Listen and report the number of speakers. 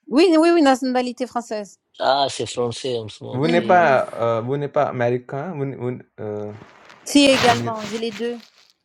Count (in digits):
3